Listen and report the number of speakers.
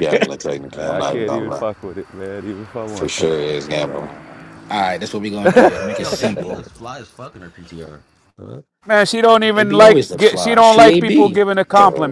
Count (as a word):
four